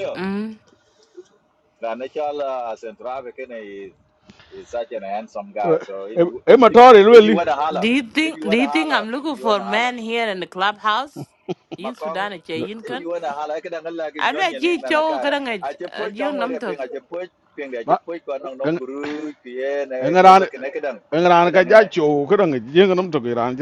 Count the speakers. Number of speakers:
three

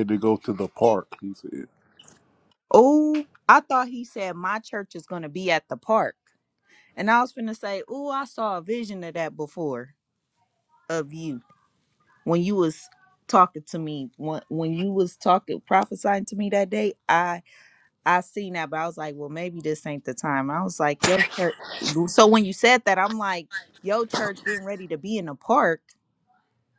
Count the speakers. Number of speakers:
two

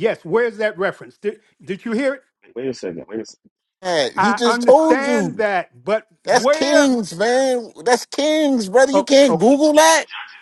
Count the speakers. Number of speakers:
three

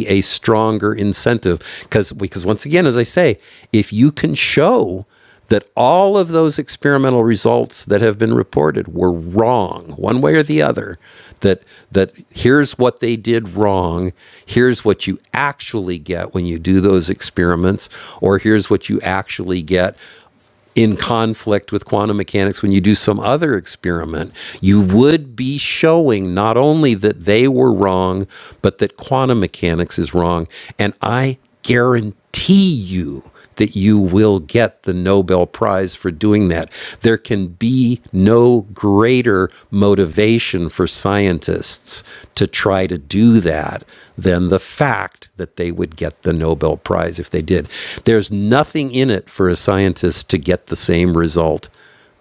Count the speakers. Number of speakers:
one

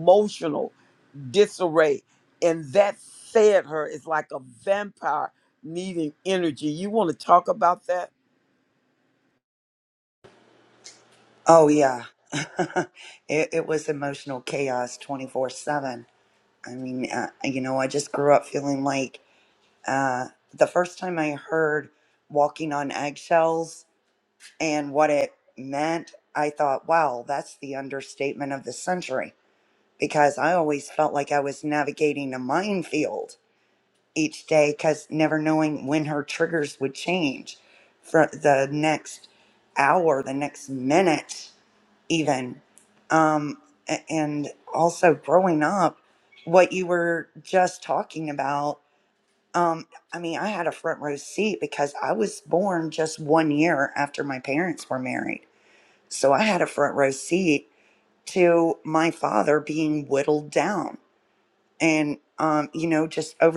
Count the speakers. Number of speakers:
two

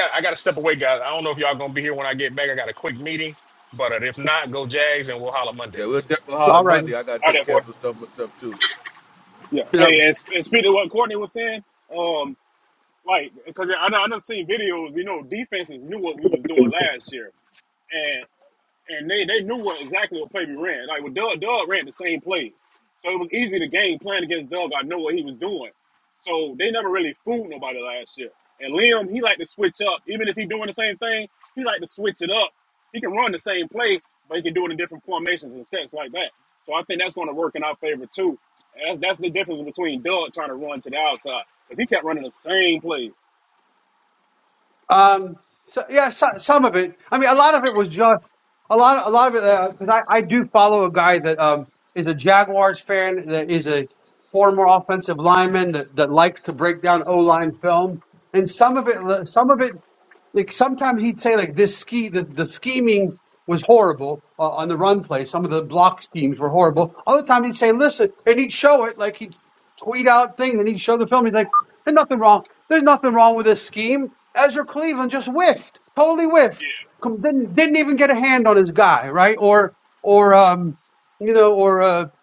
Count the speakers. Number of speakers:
four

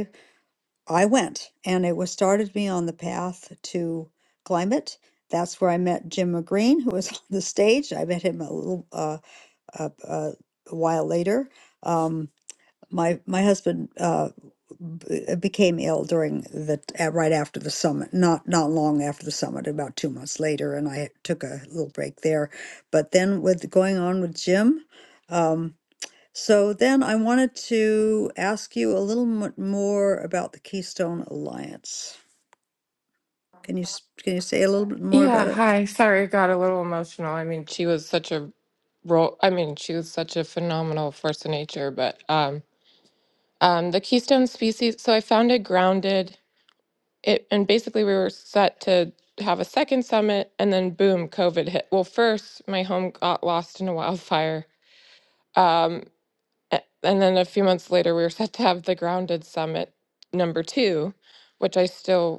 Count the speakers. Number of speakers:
two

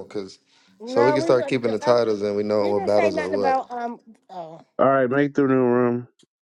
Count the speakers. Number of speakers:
three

